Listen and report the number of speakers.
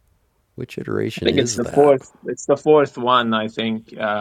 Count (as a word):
two